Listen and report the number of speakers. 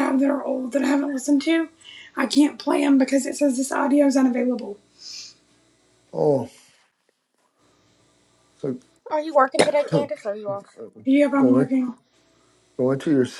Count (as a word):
three